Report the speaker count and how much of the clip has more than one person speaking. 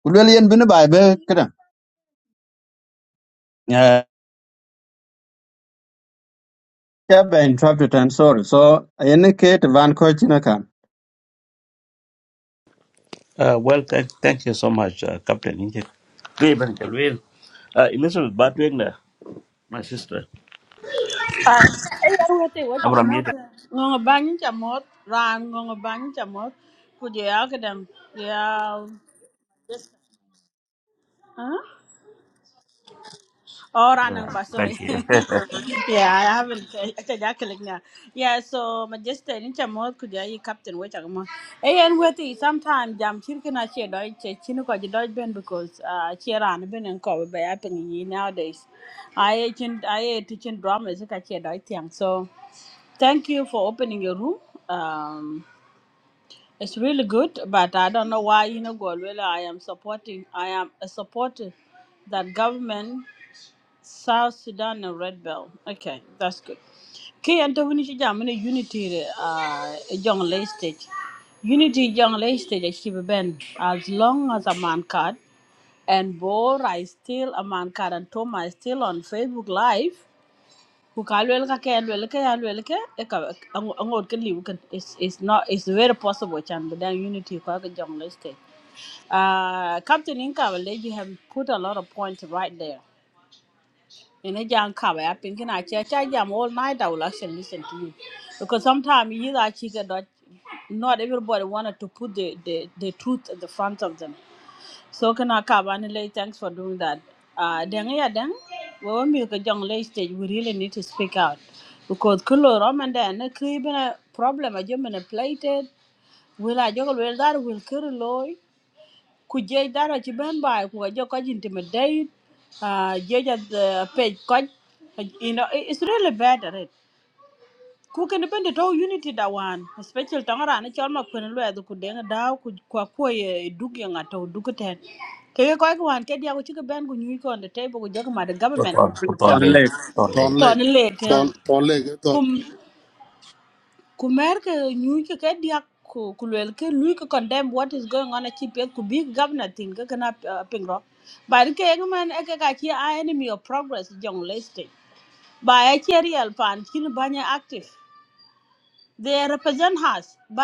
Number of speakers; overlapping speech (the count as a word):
four, about 2%